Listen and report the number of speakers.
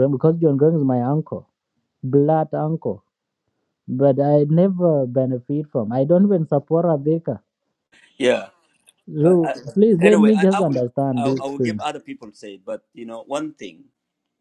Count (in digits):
2